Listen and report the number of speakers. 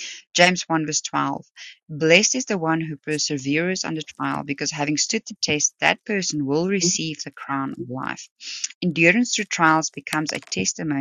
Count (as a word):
one